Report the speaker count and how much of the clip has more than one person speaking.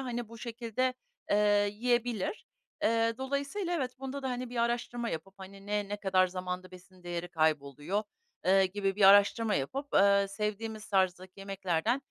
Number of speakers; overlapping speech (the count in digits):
1, no overlap